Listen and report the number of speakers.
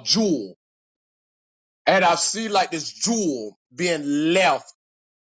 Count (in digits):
1